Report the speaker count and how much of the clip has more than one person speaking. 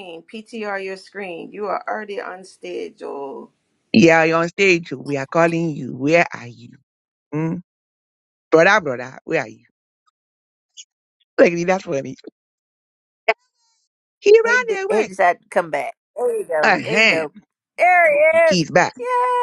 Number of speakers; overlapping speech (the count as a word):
three, about 7%